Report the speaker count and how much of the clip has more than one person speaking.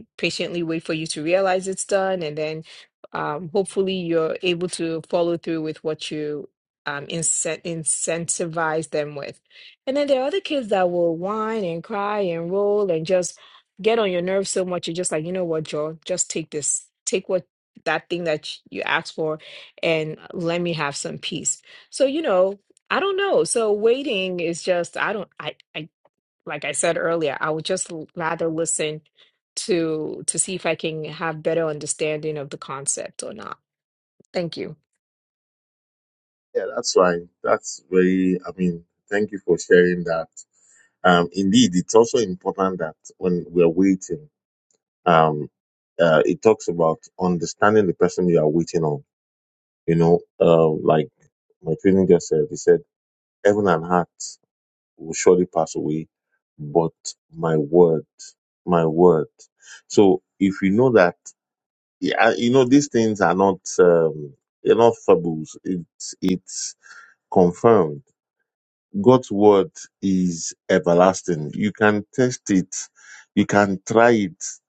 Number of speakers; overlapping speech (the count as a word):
two, no overlap